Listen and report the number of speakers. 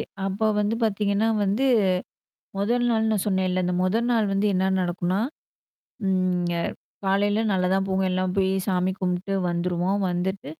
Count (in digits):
1